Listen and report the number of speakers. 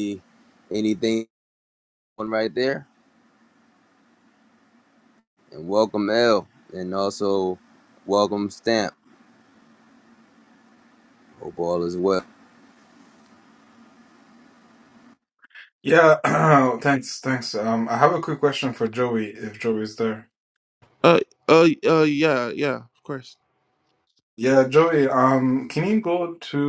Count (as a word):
three